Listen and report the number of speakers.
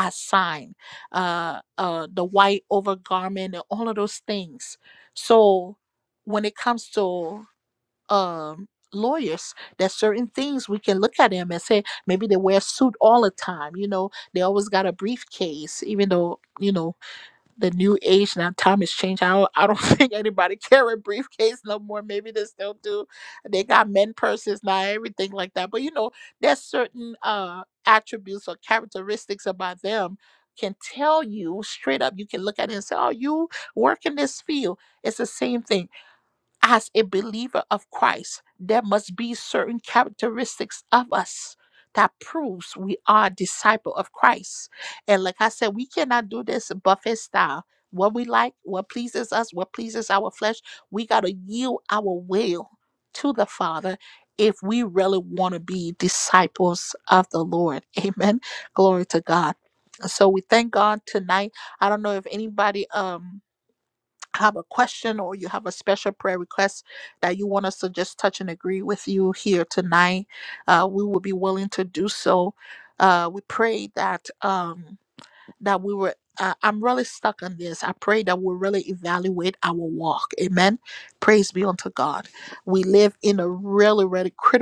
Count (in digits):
1